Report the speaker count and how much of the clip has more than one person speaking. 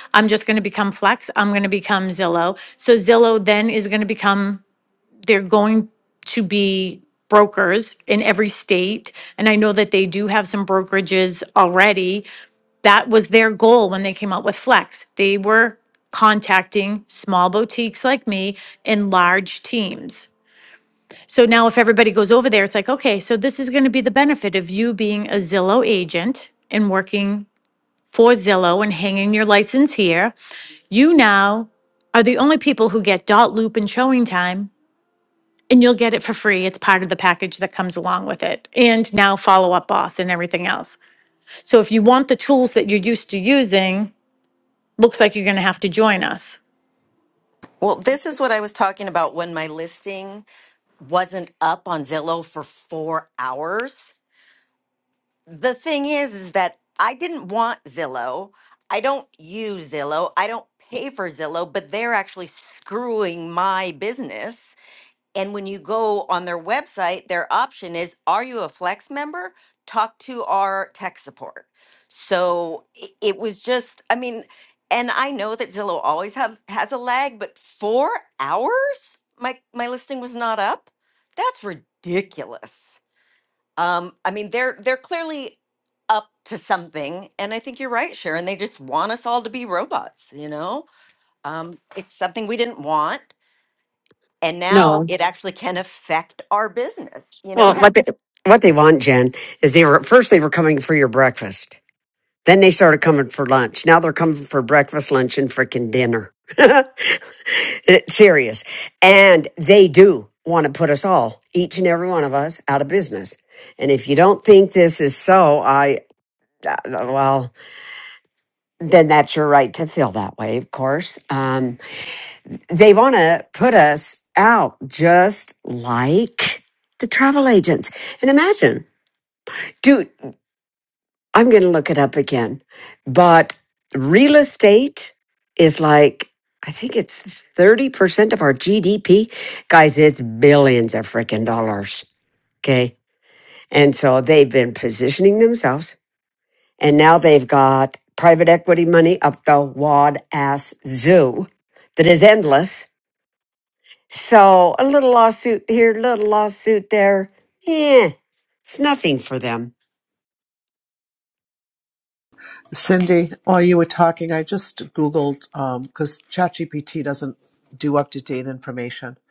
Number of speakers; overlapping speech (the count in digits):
4, under 1%